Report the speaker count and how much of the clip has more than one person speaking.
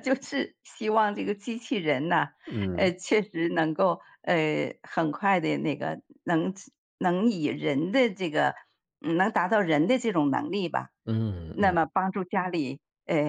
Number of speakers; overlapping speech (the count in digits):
2, about 3%